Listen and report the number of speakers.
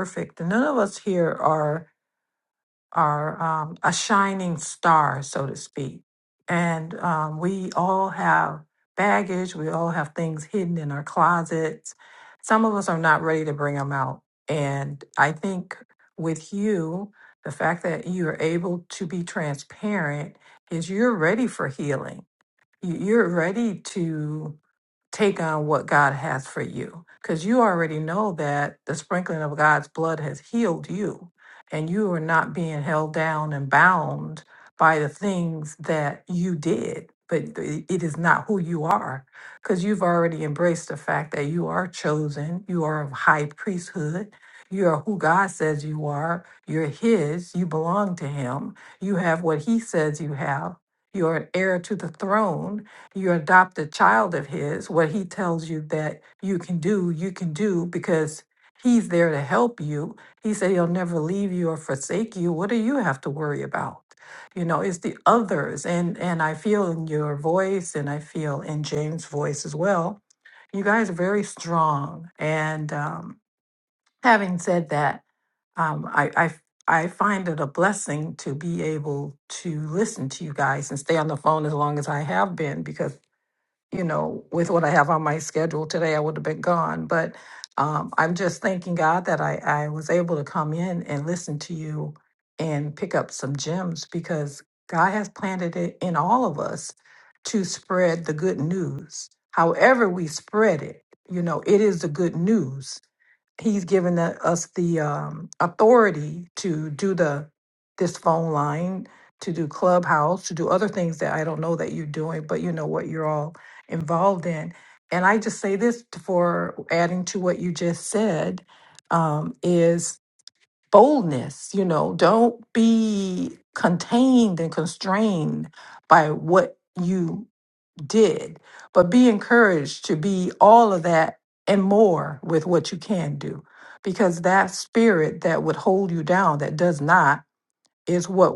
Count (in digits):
1